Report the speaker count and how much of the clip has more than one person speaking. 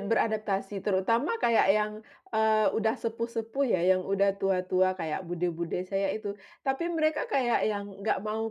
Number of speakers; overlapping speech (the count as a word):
one, no overlap